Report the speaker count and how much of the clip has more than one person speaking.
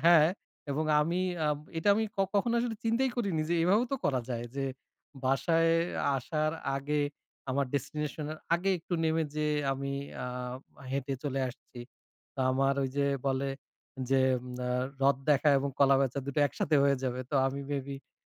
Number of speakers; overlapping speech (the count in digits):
1, no overlap